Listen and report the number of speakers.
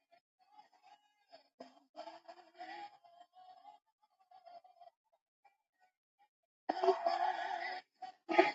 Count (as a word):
zero